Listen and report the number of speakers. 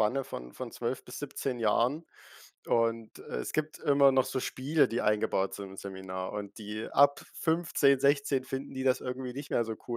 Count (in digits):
1